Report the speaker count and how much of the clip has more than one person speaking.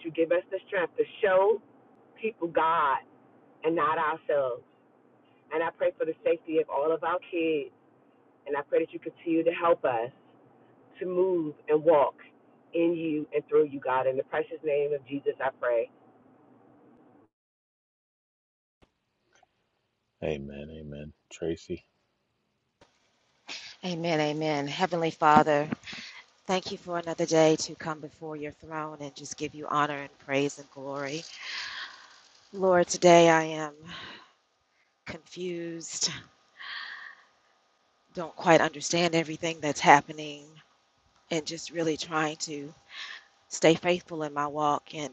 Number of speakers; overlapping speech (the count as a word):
three, no overlap